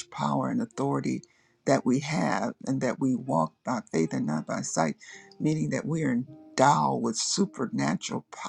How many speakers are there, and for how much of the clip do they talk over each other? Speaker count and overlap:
one, no overlap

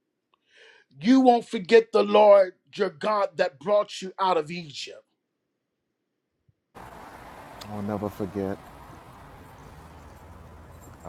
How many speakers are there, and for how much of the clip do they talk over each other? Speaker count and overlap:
two, no overlap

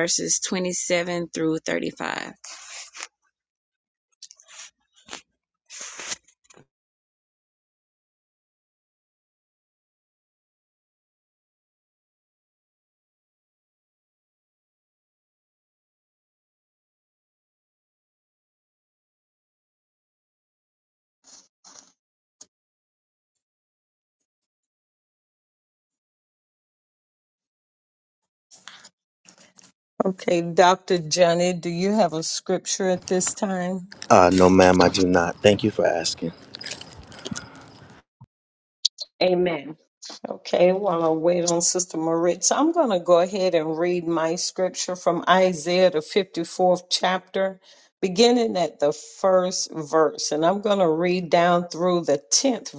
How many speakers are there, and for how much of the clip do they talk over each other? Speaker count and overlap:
three, no overlap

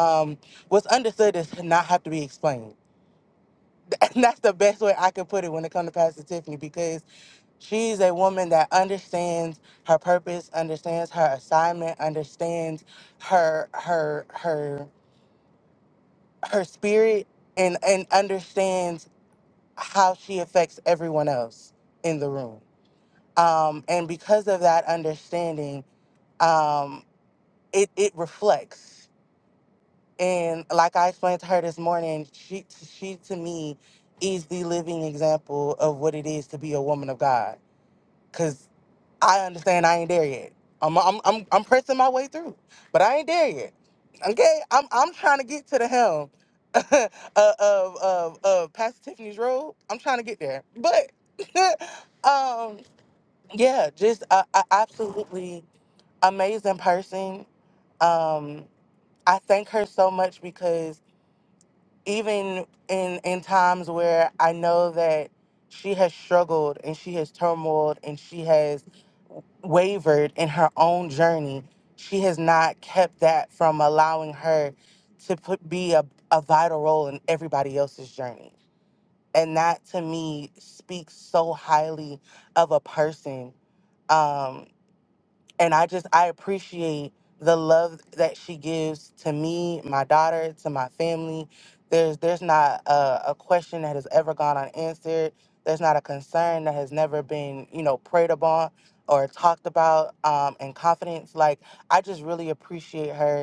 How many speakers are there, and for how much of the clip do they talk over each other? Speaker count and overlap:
one, no overlap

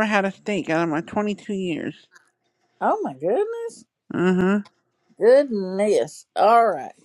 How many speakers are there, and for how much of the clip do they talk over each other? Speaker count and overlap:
two, no overlap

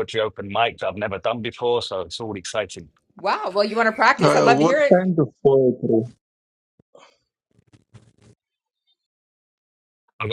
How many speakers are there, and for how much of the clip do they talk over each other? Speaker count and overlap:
three, about 8%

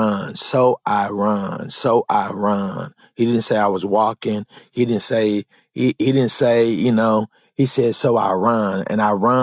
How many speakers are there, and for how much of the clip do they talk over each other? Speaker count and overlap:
one, no overlap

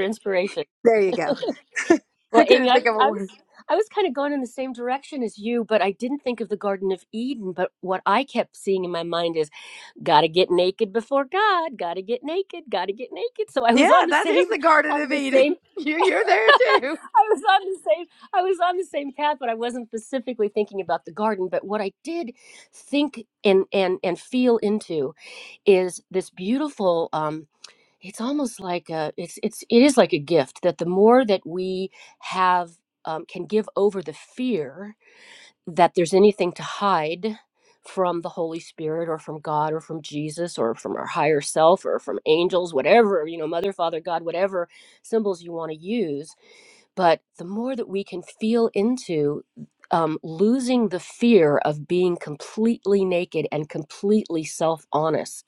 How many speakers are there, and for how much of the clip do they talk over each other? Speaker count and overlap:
two, about 6%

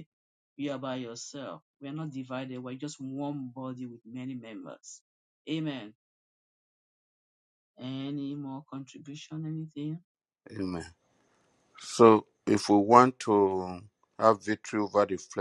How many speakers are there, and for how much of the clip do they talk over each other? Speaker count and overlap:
two, no overlap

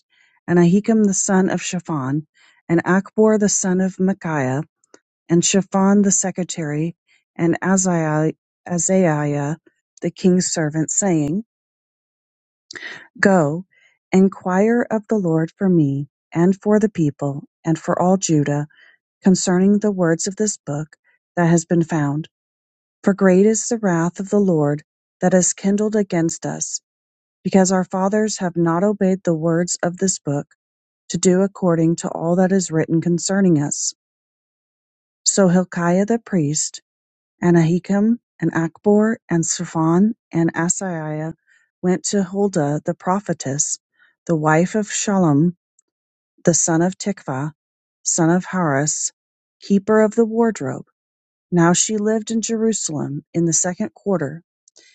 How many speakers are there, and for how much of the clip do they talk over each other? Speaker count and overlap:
one, no overlap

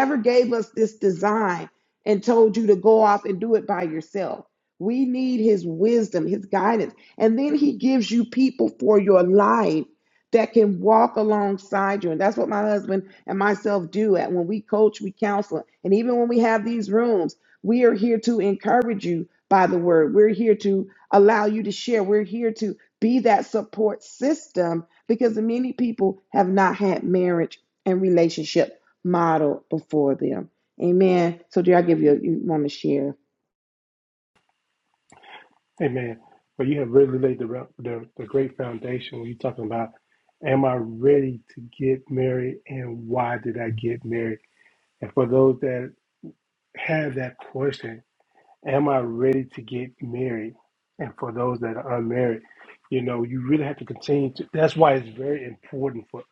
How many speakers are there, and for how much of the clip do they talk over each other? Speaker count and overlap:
two, no overlap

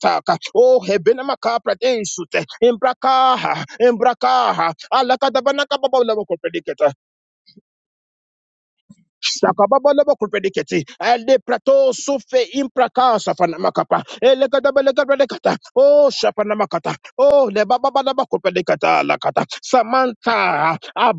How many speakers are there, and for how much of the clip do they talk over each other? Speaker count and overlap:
one, no overlap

